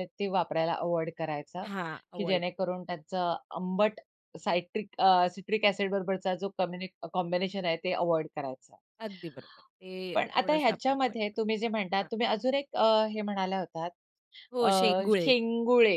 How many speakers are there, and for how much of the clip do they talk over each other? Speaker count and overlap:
two, about 13%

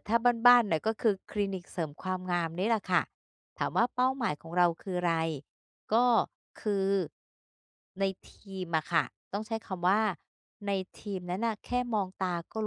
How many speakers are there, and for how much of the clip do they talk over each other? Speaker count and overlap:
one, no overlap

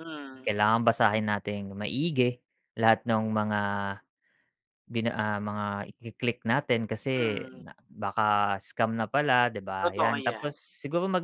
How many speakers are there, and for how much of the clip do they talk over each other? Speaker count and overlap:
two, about 10%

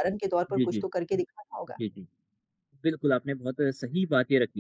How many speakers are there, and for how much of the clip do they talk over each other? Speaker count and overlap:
two, about 6%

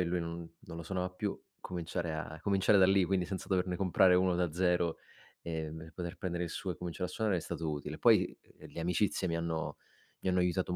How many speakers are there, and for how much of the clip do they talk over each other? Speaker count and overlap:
one, no overlap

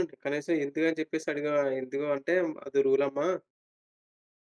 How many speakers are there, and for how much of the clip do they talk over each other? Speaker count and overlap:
one, no overlap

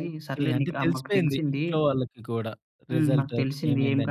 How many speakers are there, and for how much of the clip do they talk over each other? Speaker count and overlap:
two, about 71%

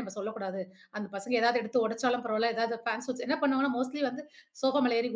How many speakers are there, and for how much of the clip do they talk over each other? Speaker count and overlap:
one, no overlap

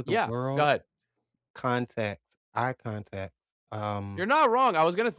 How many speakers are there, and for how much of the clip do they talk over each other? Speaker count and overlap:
two, about 12%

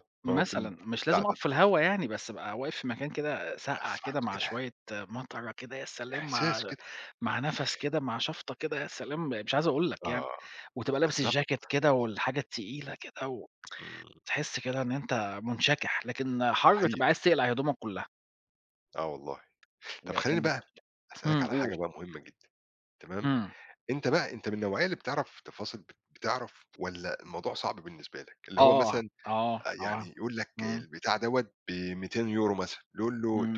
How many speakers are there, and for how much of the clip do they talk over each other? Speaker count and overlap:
two, about 17%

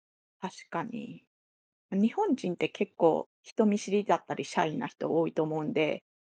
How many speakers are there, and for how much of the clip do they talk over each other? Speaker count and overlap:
one, no overlap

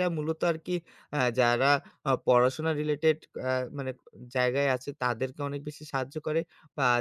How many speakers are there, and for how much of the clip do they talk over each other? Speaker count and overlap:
one, no overlap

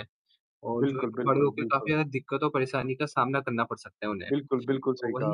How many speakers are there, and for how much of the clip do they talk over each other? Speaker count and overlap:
two, about 28%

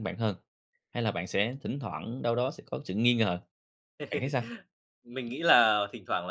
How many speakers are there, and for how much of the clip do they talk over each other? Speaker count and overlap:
two, no overlap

